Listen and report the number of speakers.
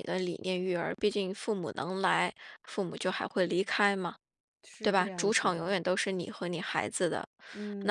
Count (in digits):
2